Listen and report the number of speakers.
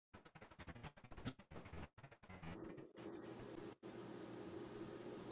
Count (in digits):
0